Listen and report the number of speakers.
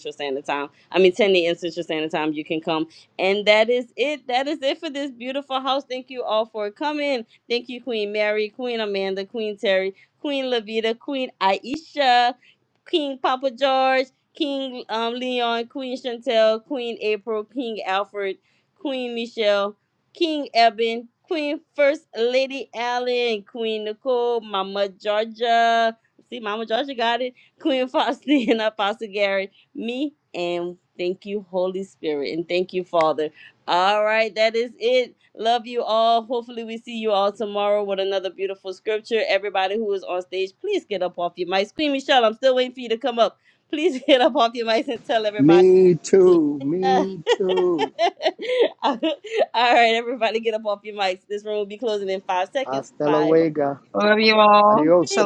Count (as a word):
three